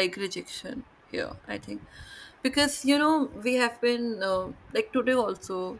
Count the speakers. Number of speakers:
one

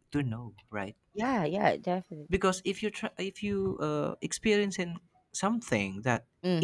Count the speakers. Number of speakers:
two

